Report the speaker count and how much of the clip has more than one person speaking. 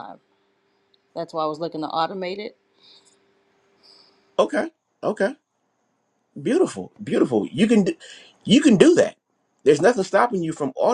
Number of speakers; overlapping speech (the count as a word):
two, no overlap